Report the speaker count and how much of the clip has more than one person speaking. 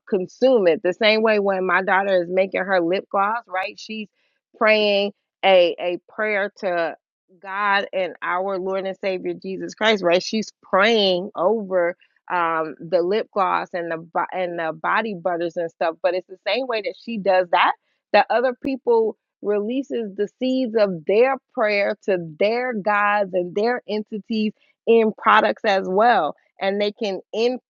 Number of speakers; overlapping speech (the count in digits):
1, no overlap